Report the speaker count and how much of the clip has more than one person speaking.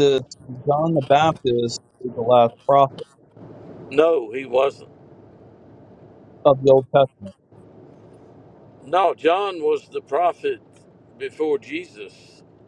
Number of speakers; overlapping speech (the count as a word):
two, no overlap